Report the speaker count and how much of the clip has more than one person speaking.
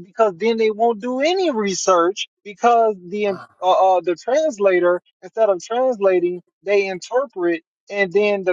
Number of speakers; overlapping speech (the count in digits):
1, no overlap